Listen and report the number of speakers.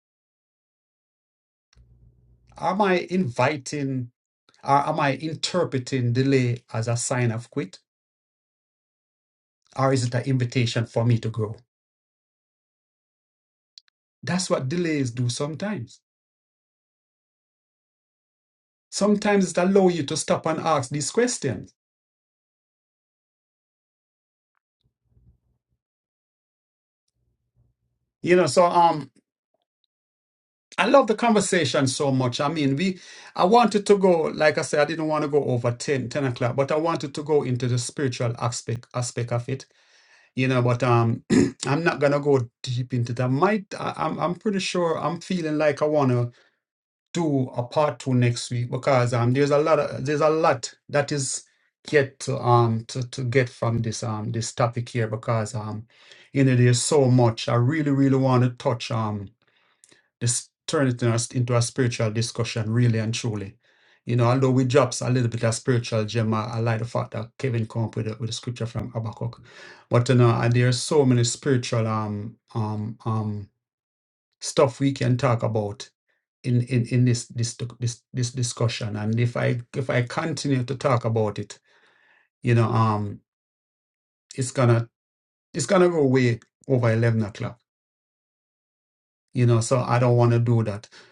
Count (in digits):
1